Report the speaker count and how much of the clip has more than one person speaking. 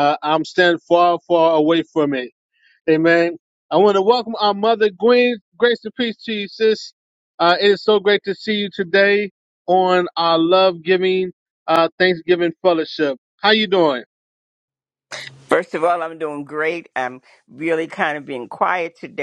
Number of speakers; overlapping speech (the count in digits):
2, no overlap